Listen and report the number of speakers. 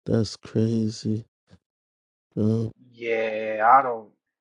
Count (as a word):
two